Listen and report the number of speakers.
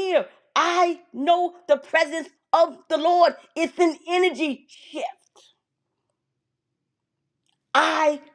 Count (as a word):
one